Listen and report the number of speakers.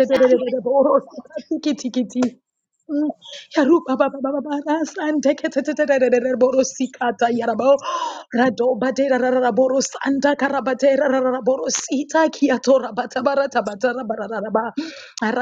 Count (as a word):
one